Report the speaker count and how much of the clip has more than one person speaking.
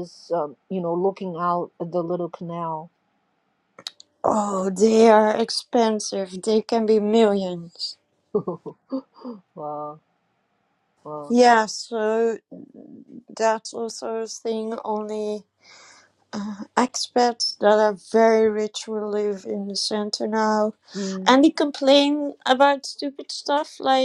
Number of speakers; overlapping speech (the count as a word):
two, under 1%